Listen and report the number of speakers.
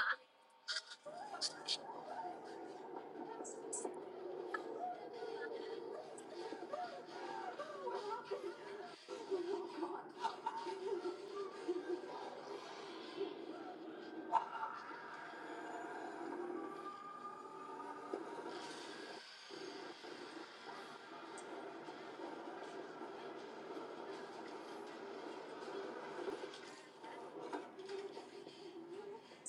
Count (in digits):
0